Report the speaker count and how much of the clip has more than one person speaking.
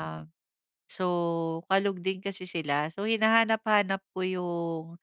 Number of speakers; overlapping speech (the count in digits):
1, no overlap